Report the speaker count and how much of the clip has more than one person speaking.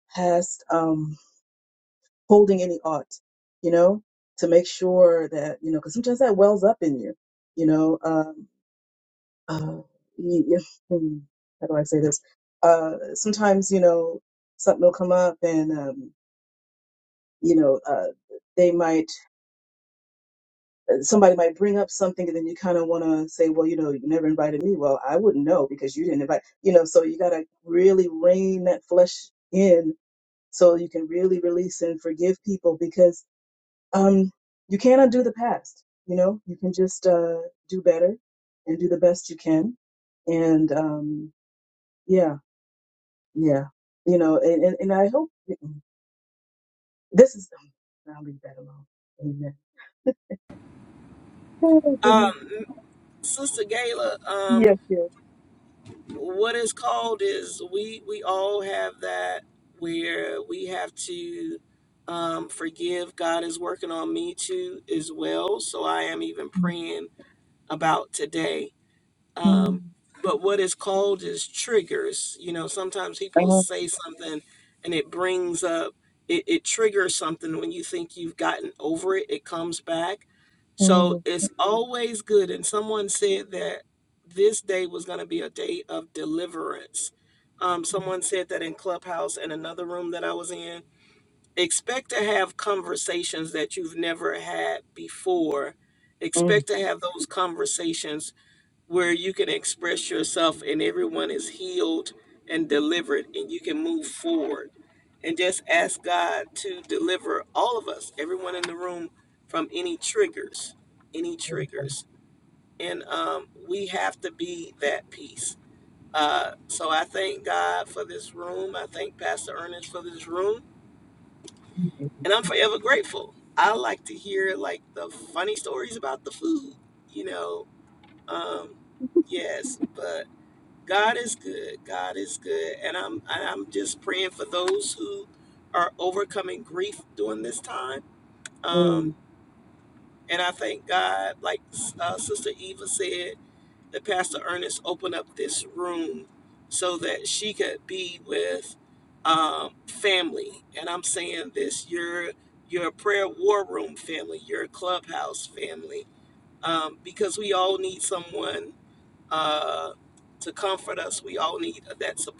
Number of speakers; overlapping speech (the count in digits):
2, about 1%